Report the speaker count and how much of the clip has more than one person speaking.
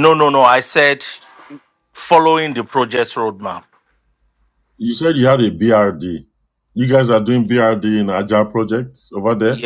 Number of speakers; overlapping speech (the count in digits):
2, about 1%